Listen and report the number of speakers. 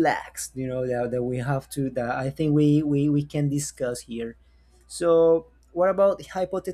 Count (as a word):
one